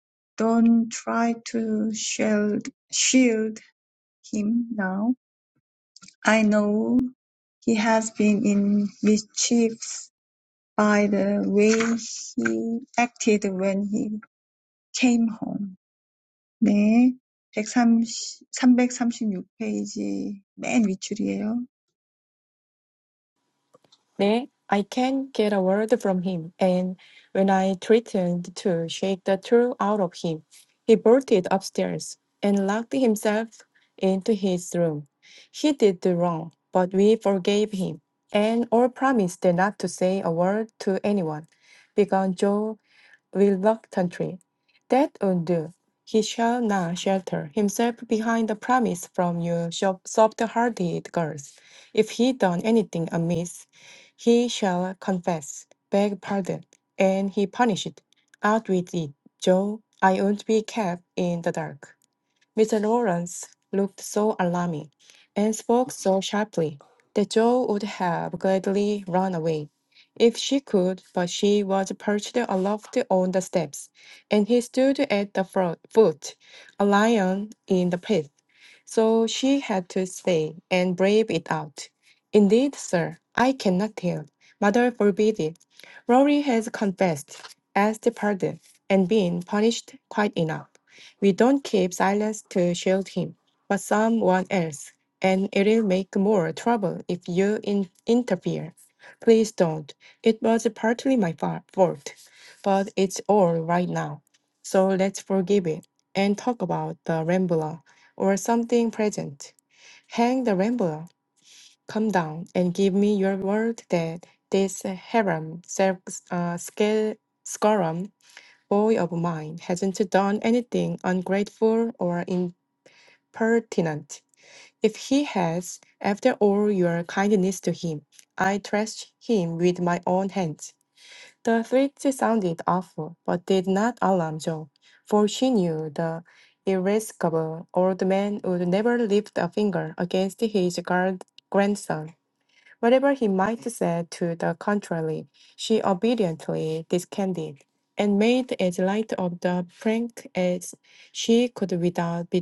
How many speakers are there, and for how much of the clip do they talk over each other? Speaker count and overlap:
2, no overlap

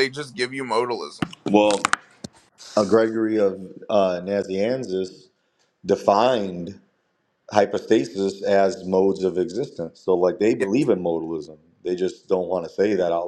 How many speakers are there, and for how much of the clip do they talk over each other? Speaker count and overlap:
2, about 1%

